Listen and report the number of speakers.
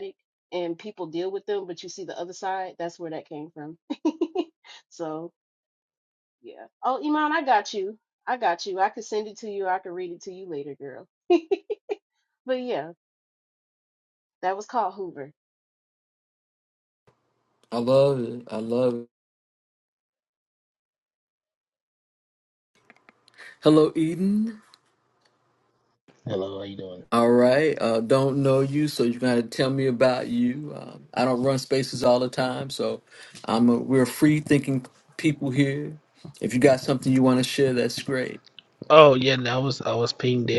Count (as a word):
three